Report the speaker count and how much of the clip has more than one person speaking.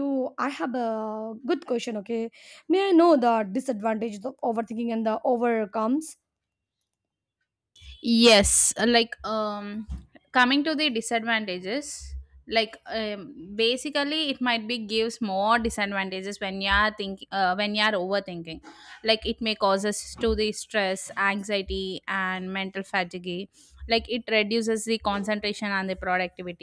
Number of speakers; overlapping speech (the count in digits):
2, no overlap